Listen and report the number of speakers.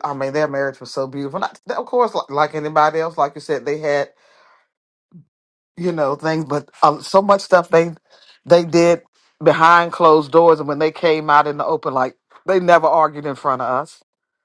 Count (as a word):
one